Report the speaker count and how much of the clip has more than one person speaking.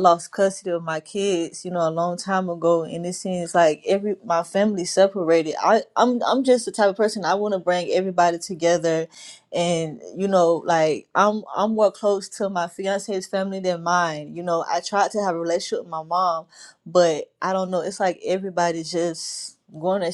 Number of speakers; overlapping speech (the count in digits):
1, no overlap